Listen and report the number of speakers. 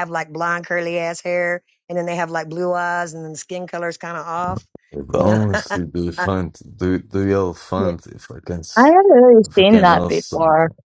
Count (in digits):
3